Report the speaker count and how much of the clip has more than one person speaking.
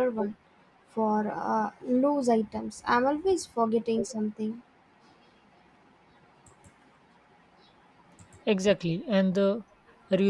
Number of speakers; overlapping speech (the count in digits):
2, no overlap